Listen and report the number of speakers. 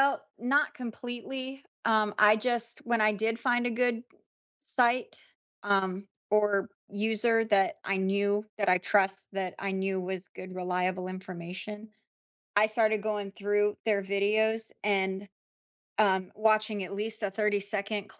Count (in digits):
1